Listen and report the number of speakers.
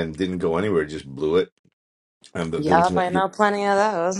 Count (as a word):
two